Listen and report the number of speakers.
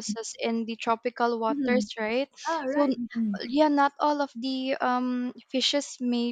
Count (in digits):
2